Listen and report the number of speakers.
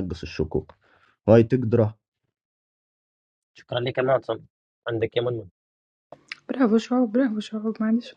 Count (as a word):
three